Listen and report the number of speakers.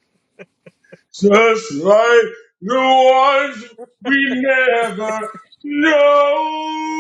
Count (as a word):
one